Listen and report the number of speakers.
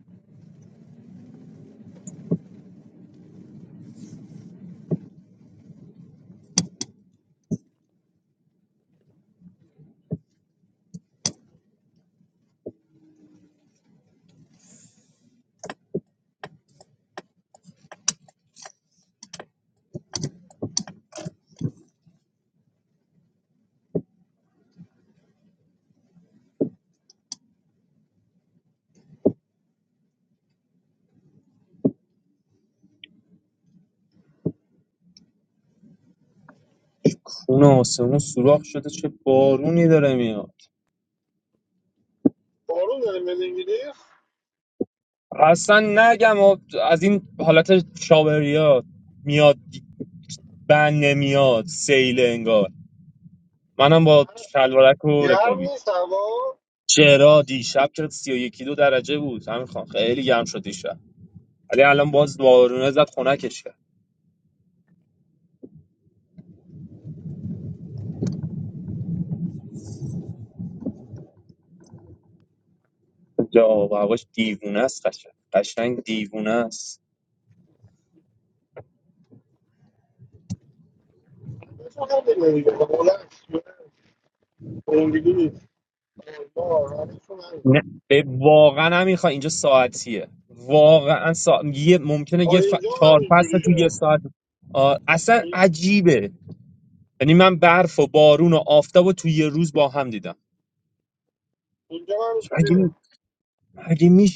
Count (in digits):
2